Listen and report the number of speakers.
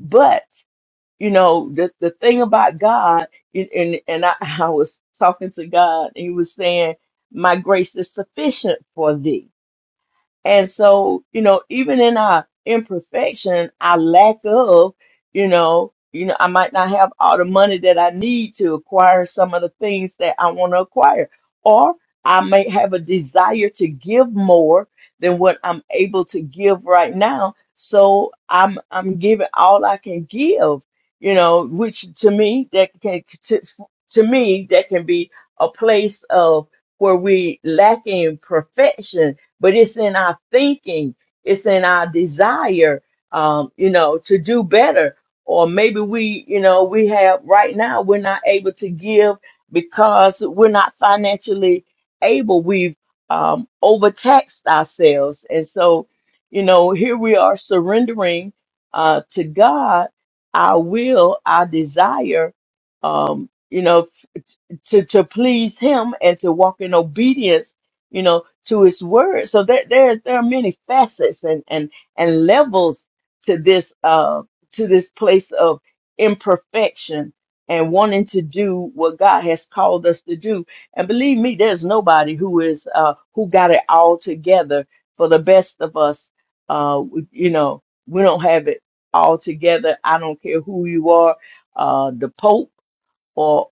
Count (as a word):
one